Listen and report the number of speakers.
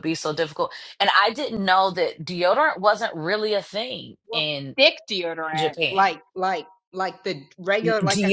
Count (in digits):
2